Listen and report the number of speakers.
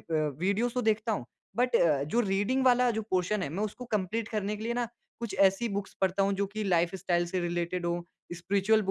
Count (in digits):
1